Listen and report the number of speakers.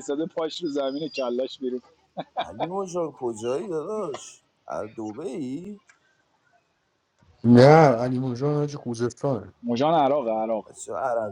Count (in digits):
3